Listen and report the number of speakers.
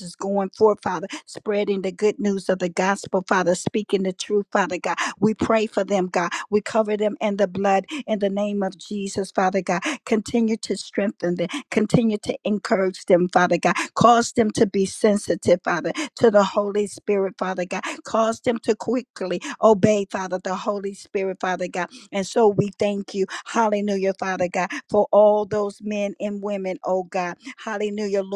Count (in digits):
1